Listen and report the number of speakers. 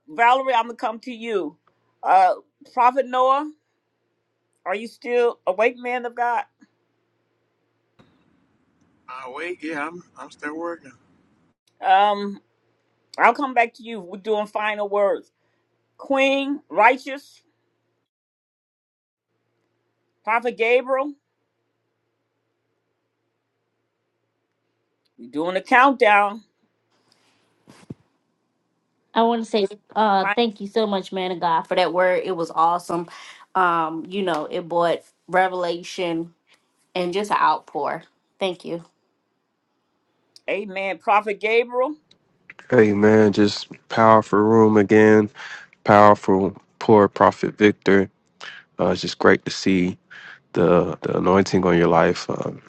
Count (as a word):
four